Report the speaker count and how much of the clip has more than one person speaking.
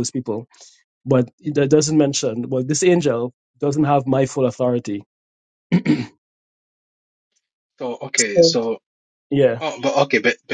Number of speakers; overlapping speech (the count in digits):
2, about 2%